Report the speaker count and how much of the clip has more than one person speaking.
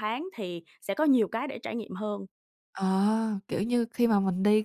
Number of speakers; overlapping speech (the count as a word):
two, no overlap